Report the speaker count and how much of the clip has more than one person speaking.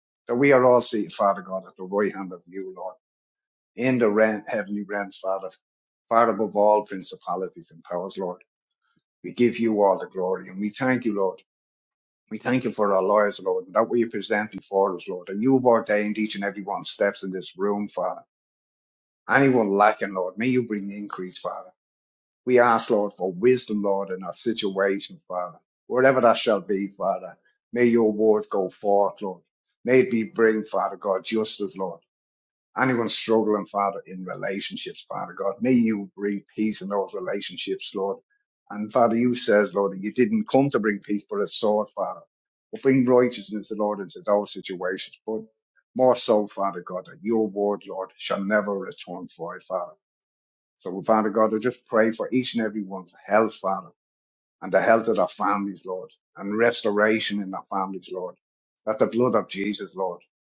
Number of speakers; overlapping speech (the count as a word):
one, no overlap